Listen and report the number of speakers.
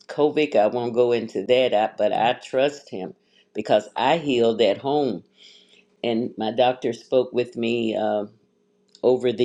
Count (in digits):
1